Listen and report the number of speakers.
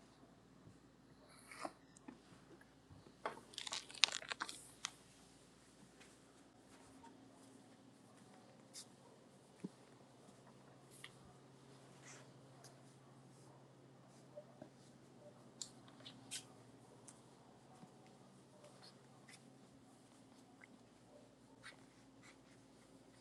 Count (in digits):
0